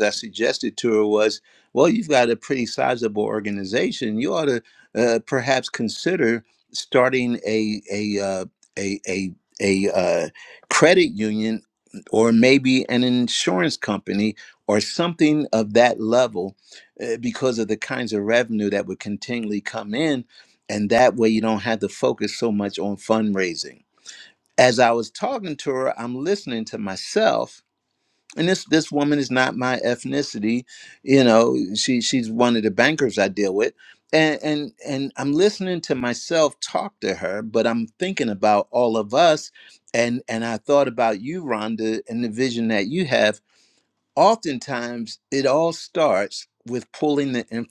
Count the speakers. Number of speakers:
one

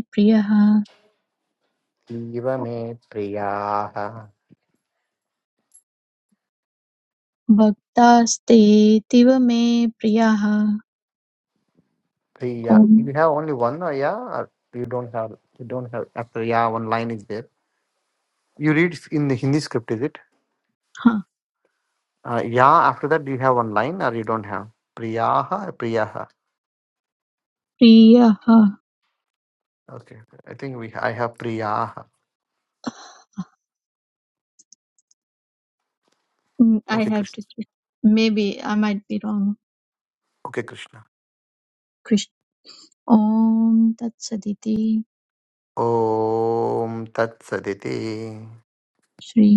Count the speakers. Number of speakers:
two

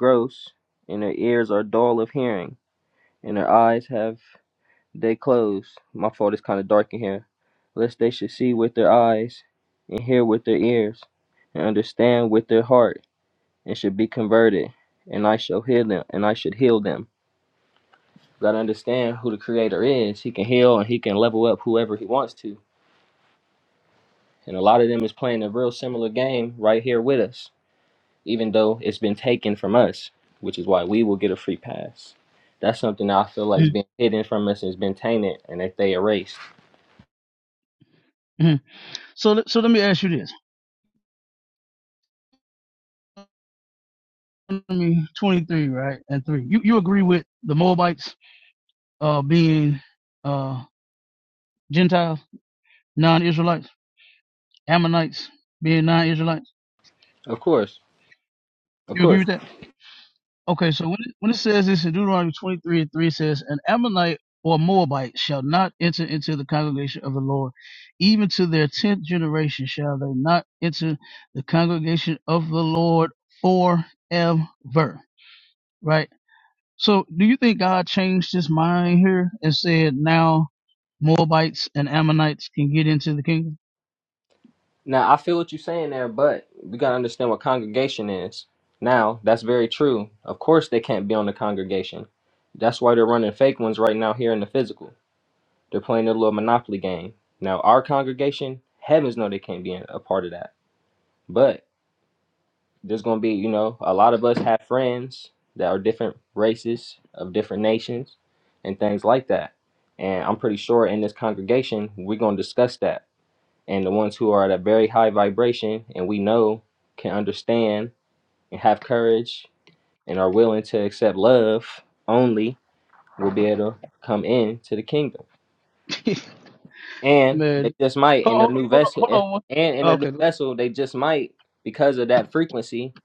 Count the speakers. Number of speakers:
two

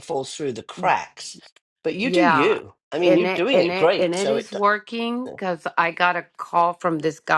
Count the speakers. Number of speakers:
two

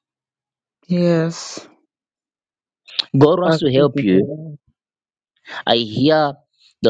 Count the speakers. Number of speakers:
two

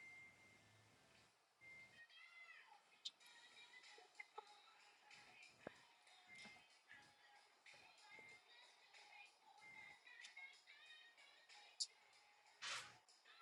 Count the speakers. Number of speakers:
zero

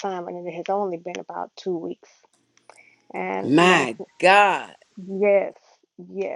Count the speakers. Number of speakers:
two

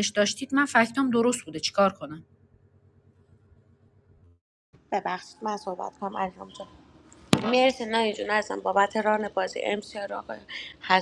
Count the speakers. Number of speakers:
two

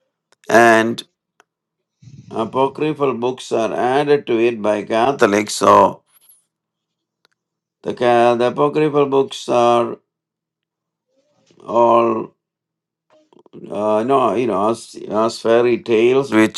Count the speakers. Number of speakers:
one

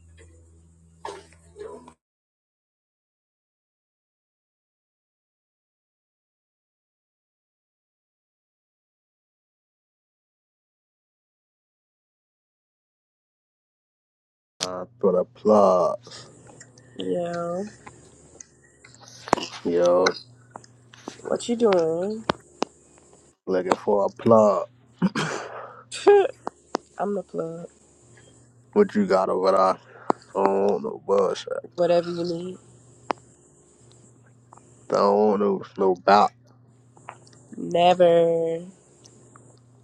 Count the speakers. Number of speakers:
two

